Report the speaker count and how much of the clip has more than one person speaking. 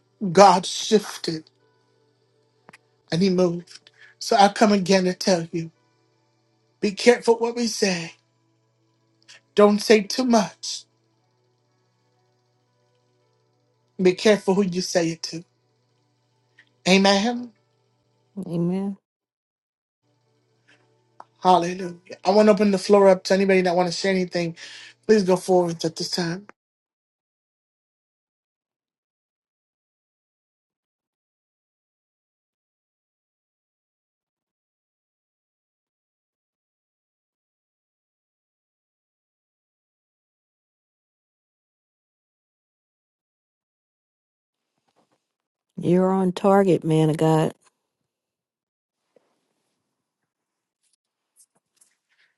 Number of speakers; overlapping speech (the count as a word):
two, no overlap